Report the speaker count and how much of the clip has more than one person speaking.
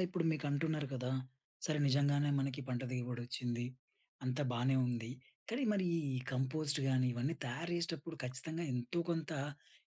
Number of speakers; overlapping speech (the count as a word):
one, no overlap